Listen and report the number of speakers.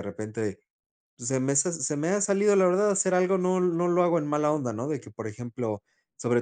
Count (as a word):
one